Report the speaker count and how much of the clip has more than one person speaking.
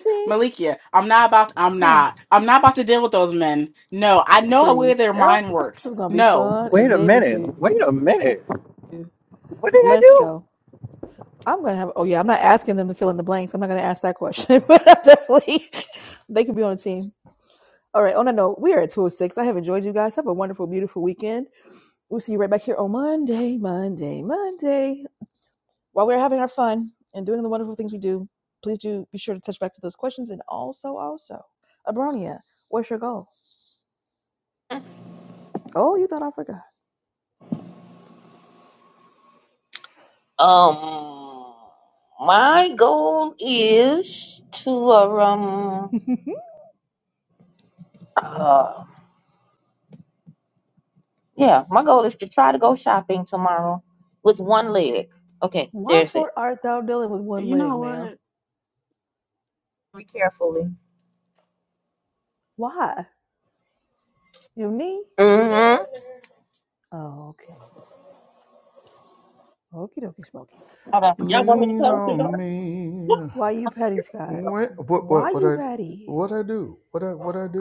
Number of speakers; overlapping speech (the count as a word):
five, about 7%